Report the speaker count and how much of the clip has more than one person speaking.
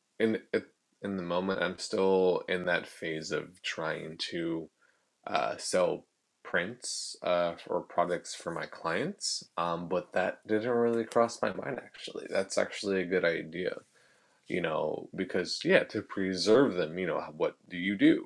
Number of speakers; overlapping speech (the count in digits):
1, no overlap